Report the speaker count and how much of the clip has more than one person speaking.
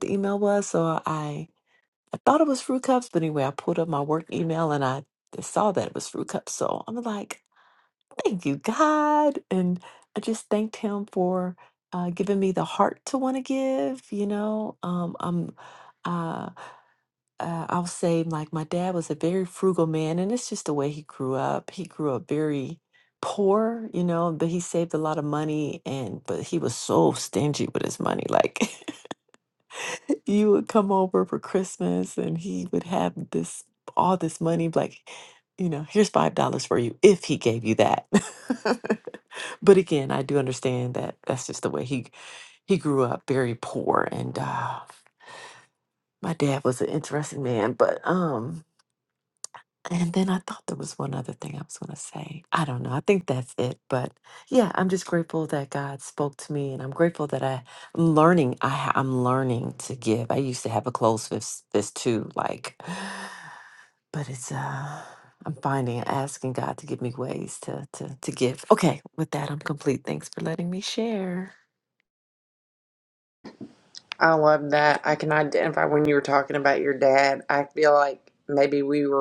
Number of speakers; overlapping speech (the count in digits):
2, no overlap